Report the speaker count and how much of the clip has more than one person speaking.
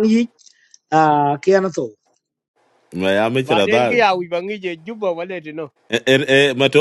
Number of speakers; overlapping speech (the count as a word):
three, about 9%